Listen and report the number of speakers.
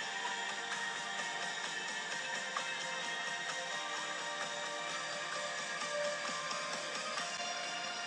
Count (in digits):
0